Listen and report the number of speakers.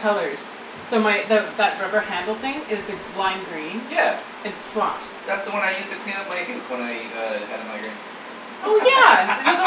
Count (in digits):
2